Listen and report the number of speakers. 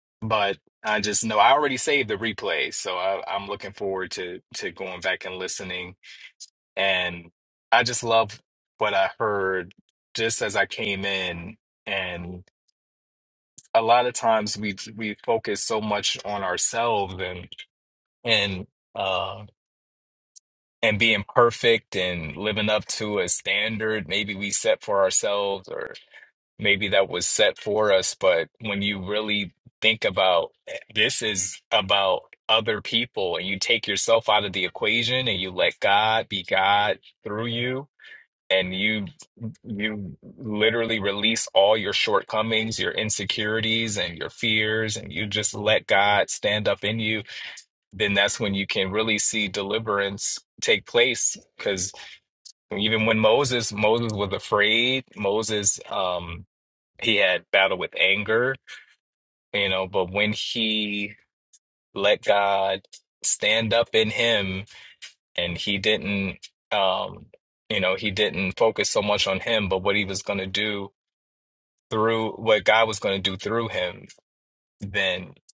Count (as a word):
one